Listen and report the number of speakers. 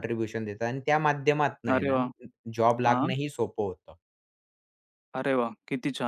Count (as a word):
two